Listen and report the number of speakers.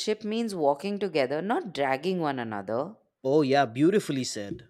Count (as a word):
two